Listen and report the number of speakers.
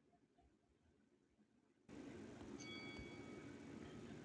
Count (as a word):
zero